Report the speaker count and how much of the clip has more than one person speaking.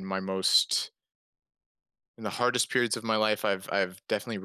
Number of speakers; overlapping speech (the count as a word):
one, no overlap